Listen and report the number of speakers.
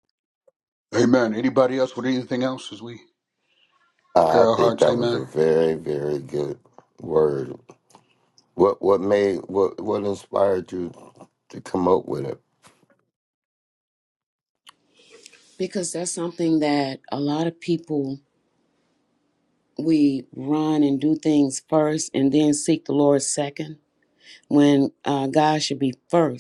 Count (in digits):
3